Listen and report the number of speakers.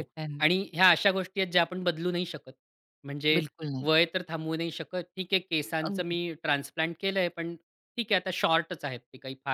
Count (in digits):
2